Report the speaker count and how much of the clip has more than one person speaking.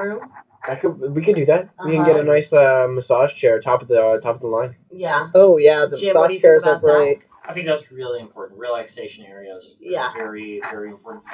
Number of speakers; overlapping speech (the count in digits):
4, about 22%